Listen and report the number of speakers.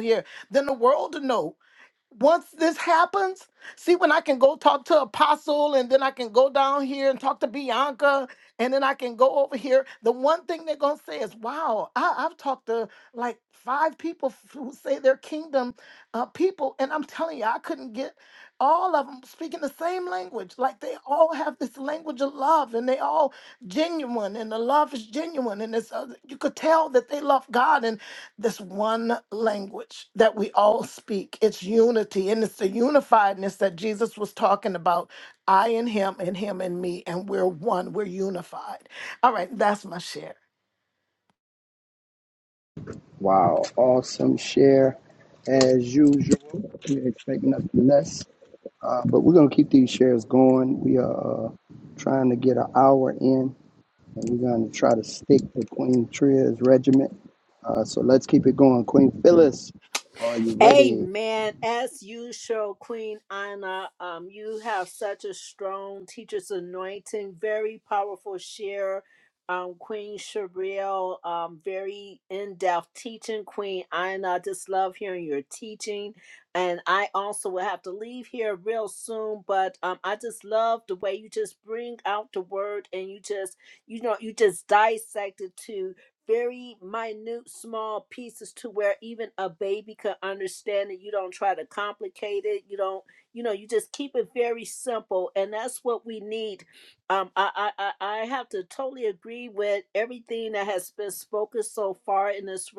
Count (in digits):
3